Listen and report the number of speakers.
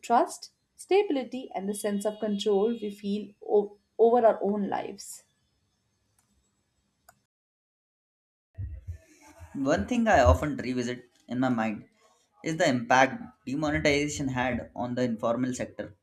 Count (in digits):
2